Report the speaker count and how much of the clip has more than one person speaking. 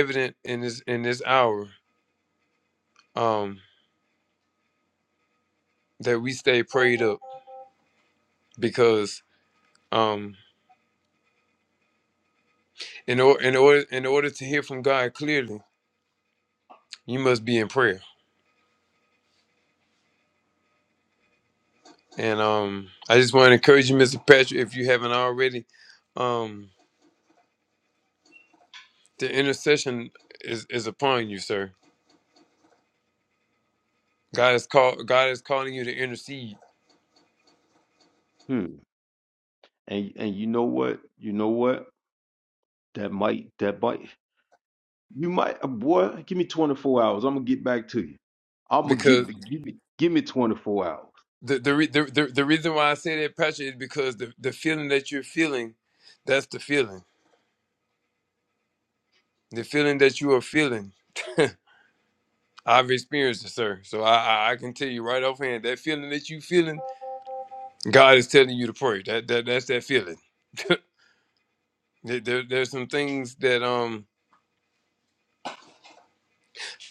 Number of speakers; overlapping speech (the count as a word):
two, about 1%